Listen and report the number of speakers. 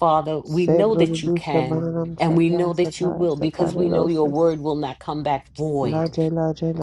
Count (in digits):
2